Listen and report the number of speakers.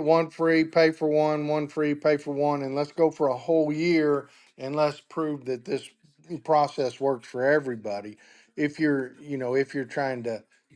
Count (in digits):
1